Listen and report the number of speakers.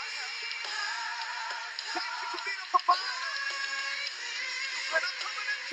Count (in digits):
0